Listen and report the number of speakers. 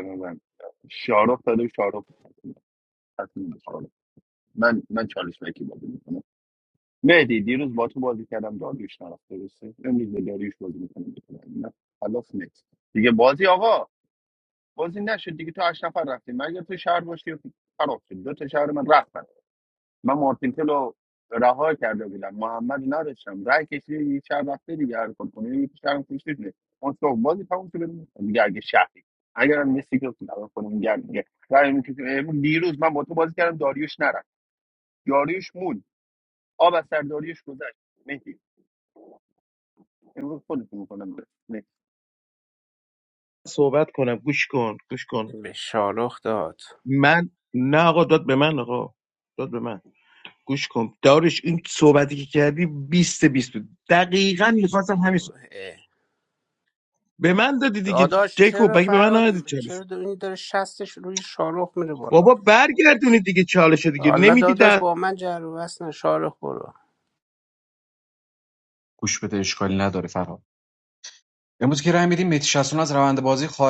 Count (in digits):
4